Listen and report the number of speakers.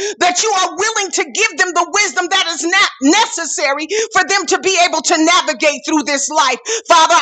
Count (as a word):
one